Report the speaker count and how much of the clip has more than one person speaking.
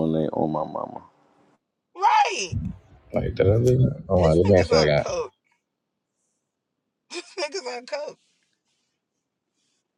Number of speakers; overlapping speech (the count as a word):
three, about 9%